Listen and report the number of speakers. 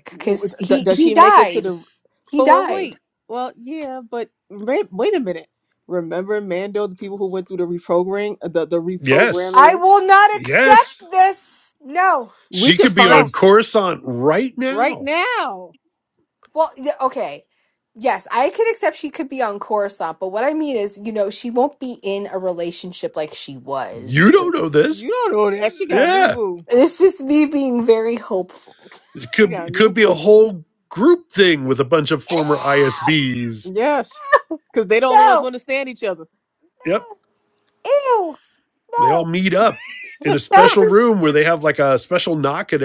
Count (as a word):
three